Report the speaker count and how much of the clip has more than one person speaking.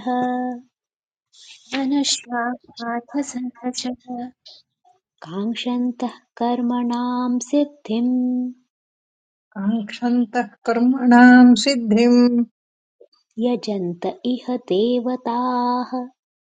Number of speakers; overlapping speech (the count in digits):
3, no overlap